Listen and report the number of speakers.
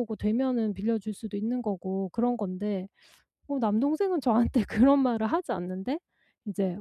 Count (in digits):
1